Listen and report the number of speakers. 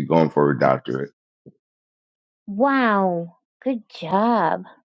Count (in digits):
2